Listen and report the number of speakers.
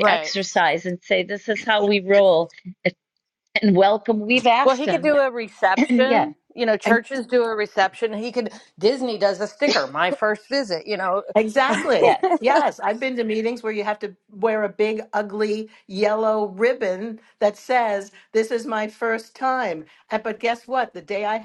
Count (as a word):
three